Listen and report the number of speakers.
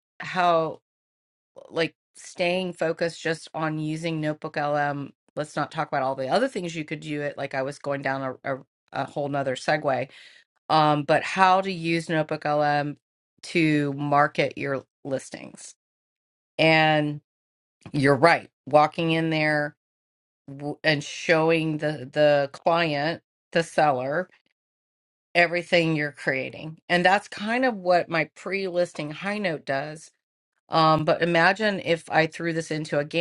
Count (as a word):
one